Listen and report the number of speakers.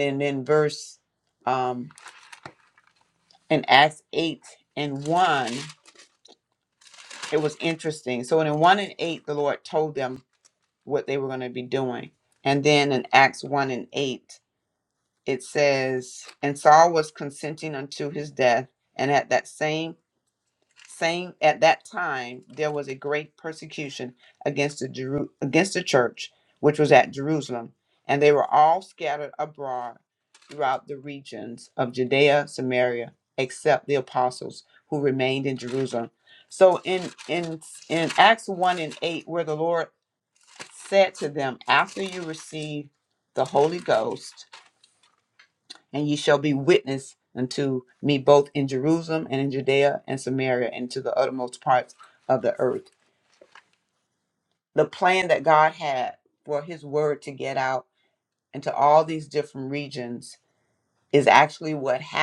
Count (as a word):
one